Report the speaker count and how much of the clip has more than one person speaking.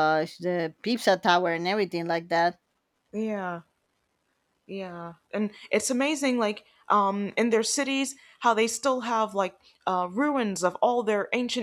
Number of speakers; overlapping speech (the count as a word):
two, no overlap